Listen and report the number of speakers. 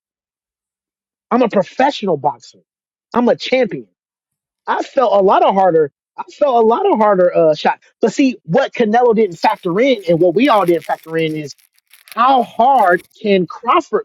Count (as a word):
one